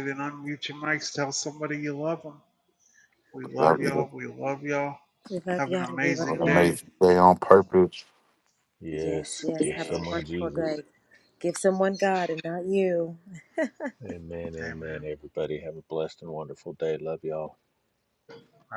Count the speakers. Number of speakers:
four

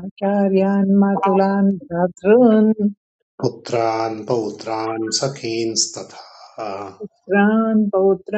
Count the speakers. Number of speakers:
two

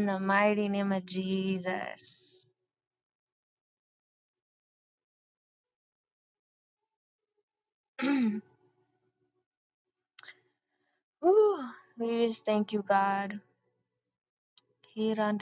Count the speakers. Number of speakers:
one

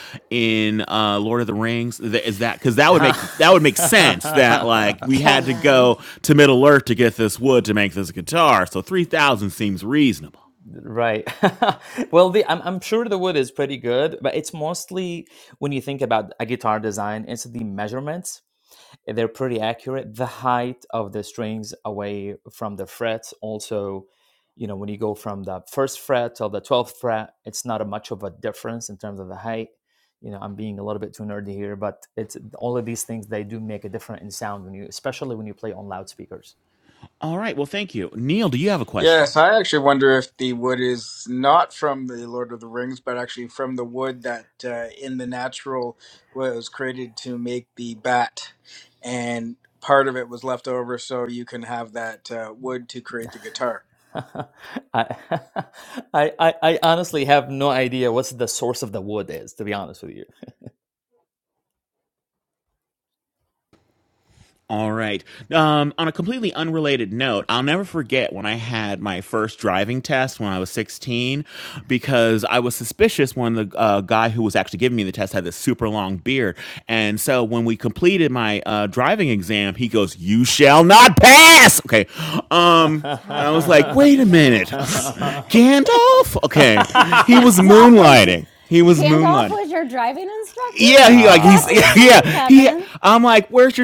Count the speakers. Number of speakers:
four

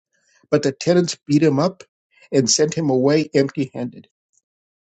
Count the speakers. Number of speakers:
one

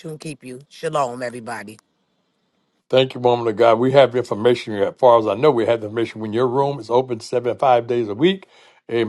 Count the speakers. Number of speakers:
two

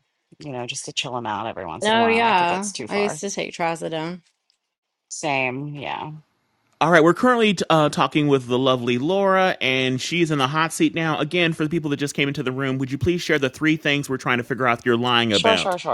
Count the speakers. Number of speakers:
three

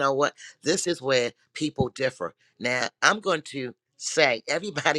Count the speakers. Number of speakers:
one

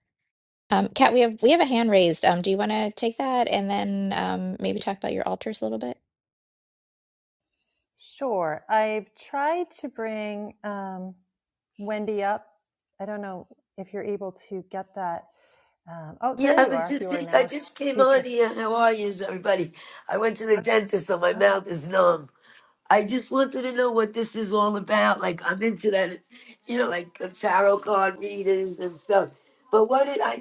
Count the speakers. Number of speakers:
three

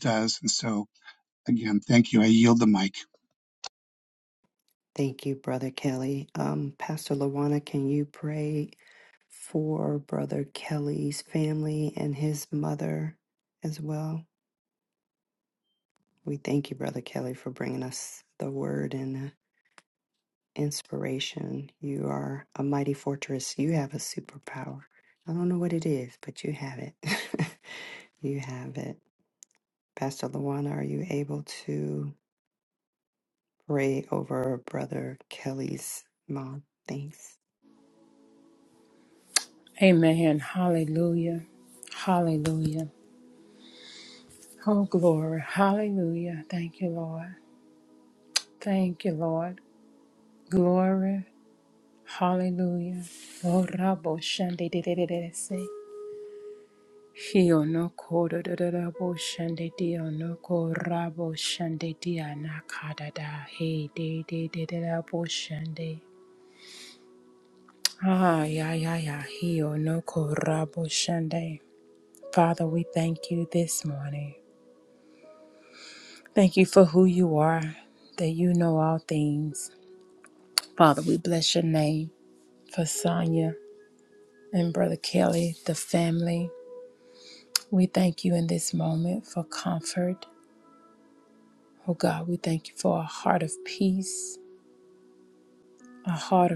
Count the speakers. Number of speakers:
three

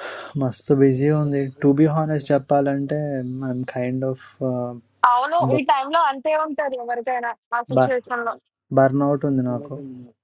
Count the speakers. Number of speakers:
two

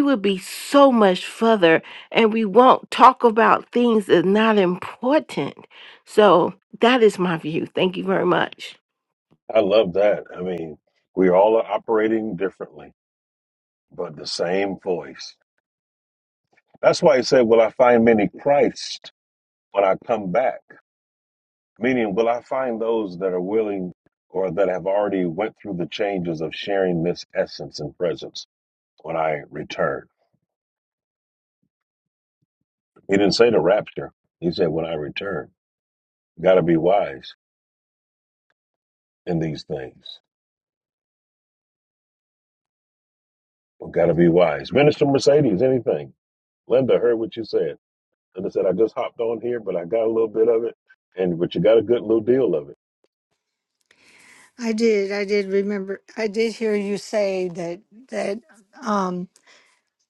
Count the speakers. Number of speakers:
three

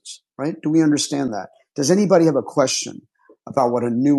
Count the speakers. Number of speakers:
one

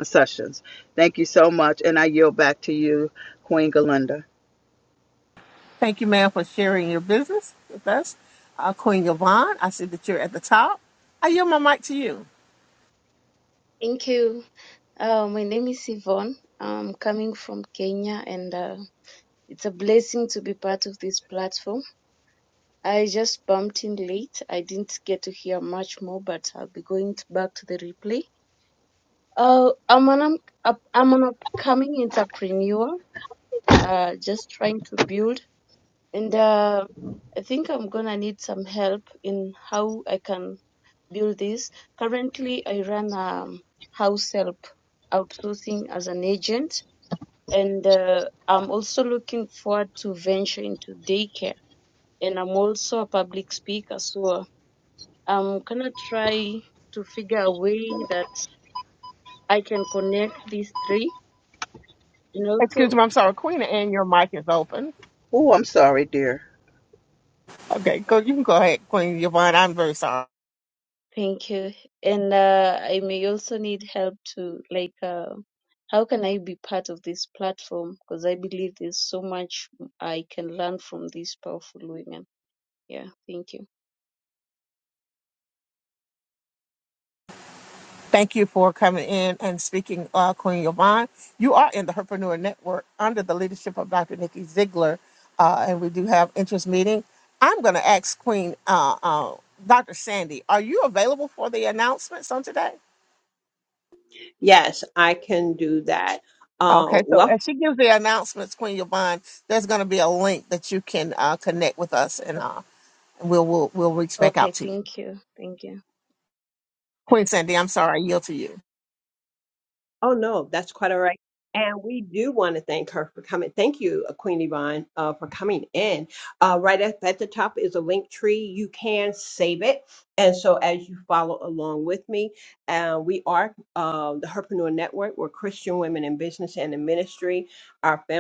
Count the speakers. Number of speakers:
four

